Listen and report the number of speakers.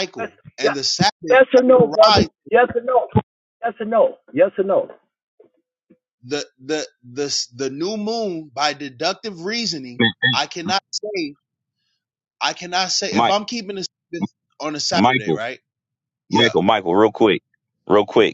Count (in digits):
3